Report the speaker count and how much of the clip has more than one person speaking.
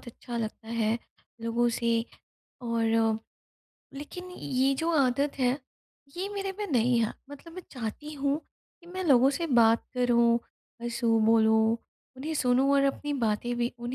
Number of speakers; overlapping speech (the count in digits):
1, no overlap